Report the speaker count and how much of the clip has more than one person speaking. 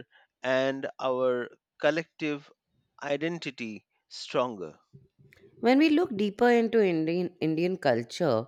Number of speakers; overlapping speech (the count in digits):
2, no overlap